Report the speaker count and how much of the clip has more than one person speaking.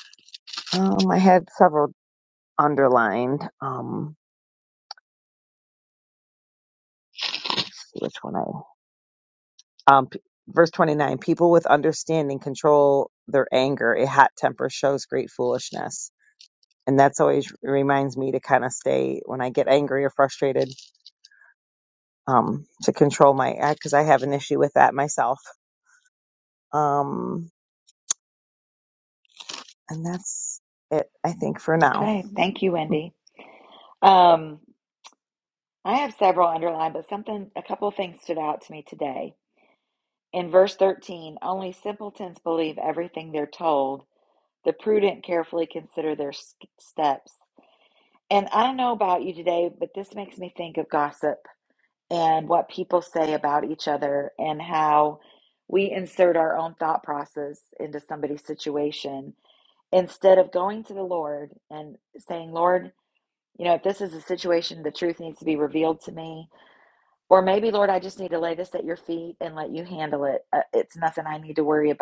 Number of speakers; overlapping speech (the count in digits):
2, under 1%